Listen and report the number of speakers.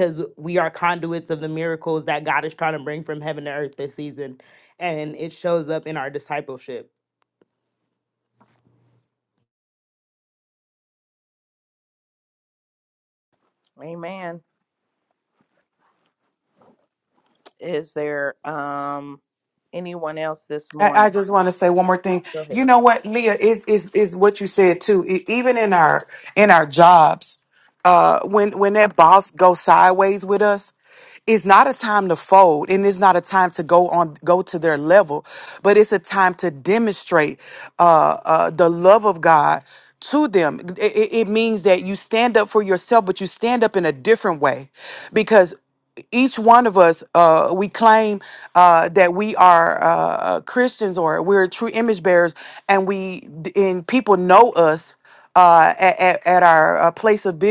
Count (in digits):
3